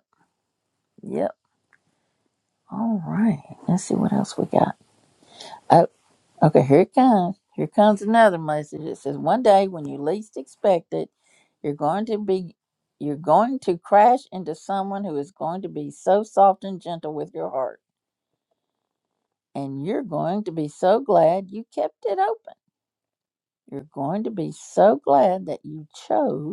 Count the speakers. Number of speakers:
one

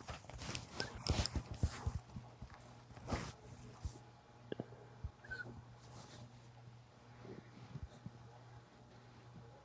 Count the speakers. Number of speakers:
zero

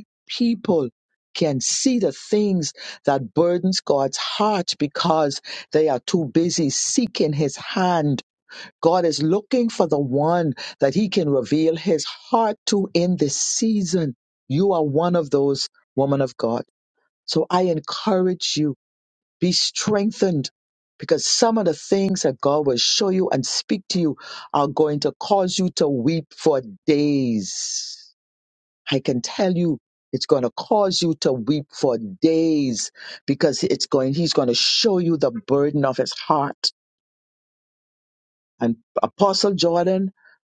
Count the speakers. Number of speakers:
one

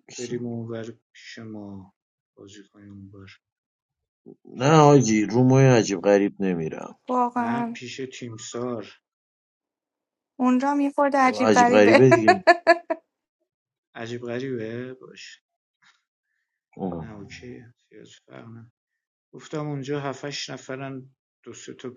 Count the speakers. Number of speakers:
three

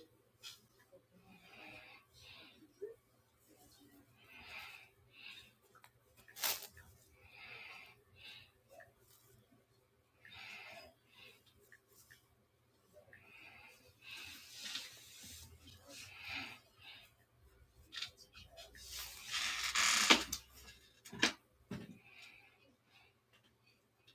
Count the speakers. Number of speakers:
zero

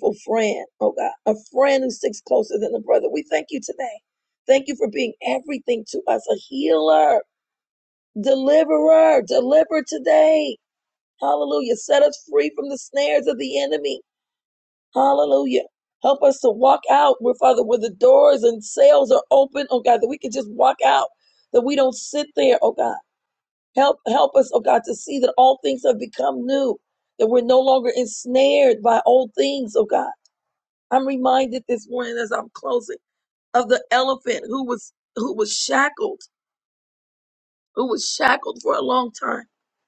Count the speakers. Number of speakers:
one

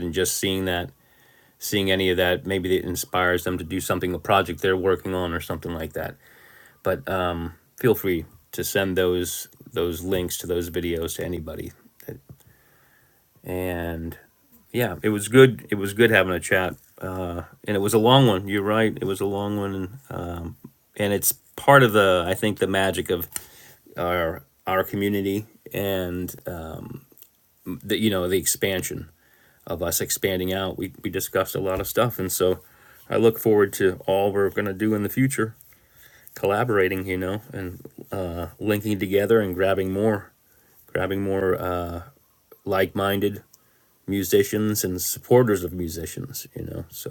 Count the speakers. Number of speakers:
one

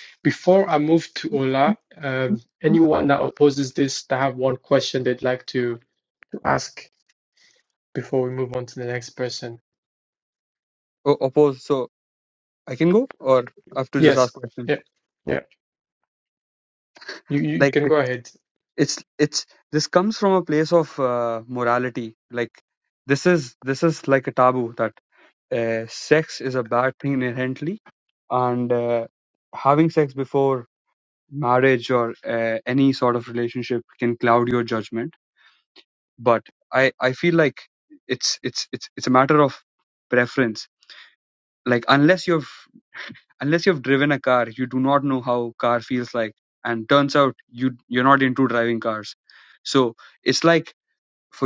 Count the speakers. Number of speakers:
two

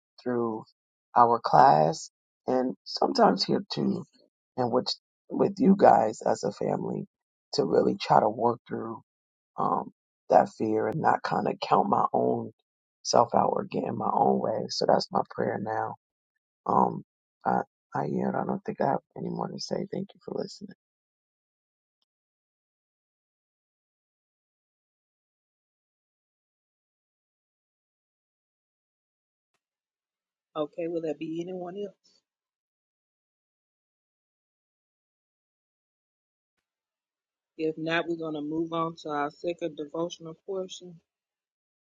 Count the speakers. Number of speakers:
two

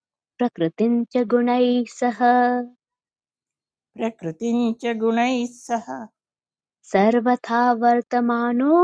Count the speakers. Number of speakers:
two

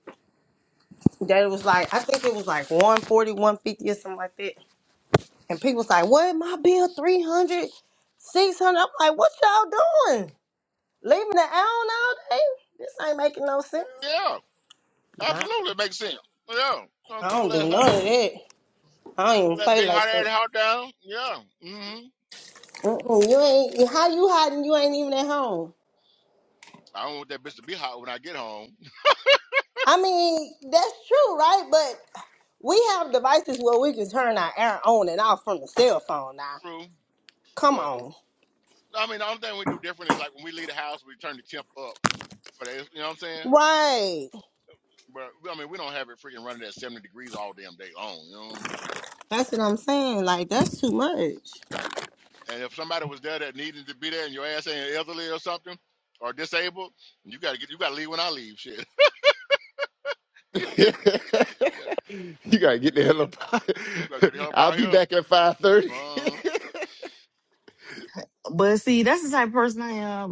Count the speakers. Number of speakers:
four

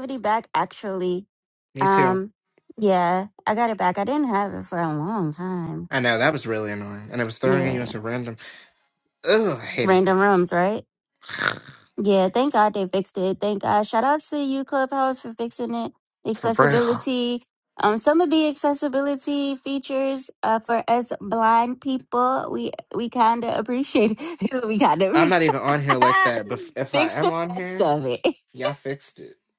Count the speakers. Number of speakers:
two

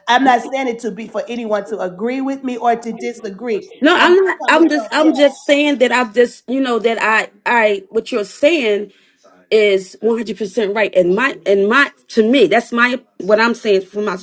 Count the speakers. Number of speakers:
two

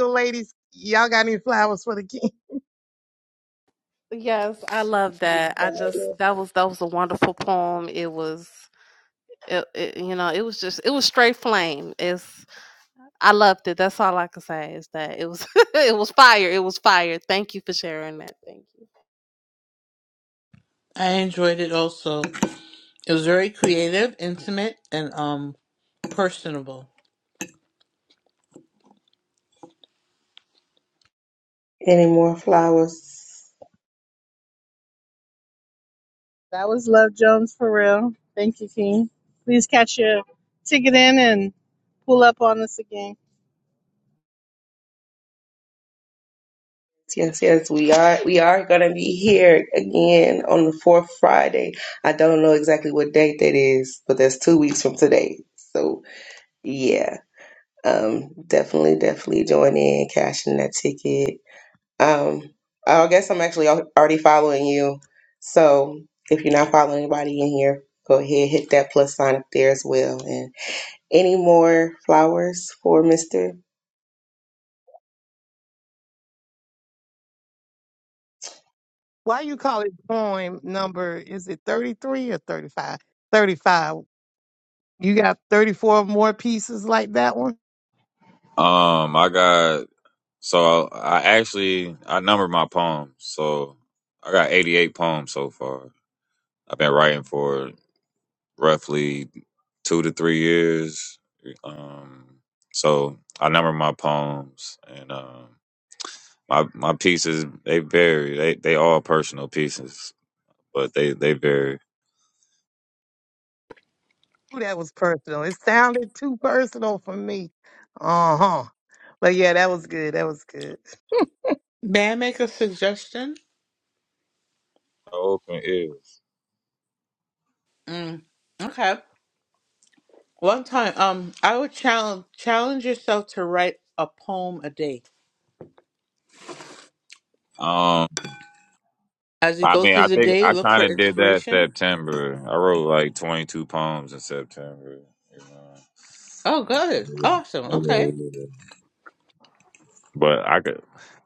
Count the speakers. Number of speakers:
six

